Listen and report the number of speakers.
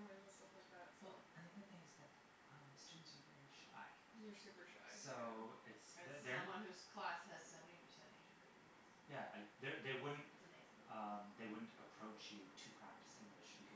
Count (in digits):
3